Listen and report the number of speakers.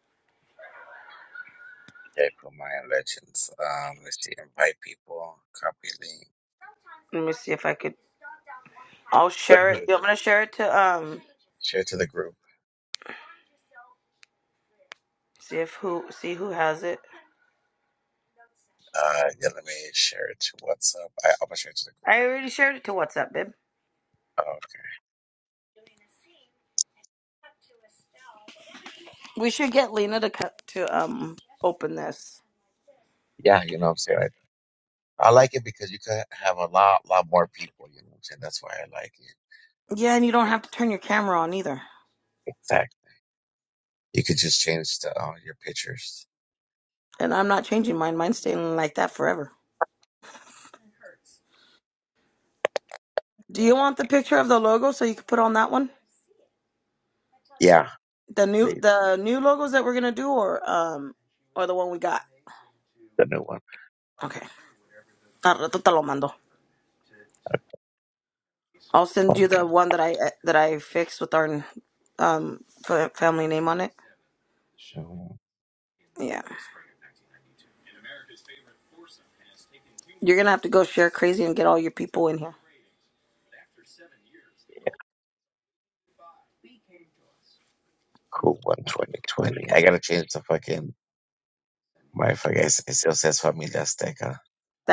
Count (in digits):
2